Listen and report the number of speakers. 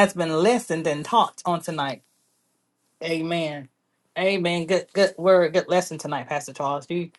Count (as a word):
one